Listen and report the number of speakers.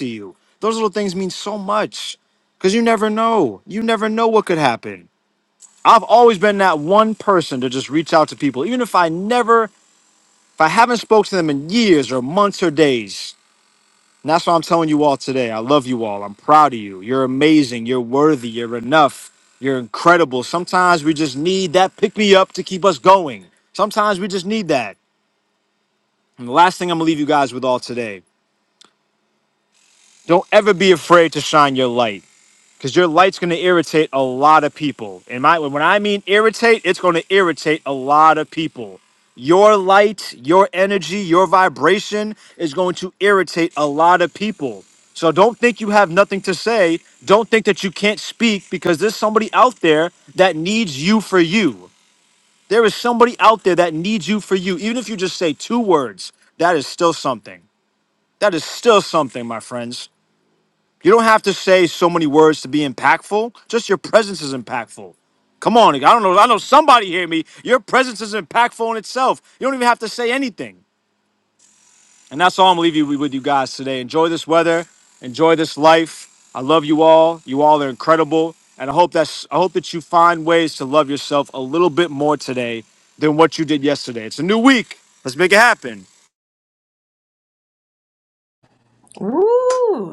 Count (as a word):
two